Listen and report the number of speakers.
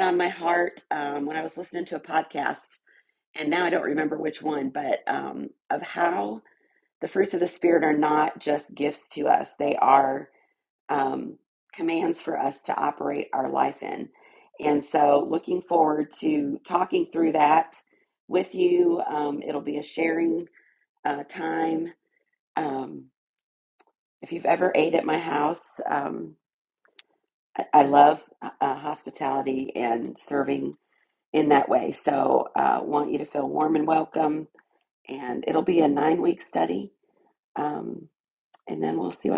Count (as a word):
one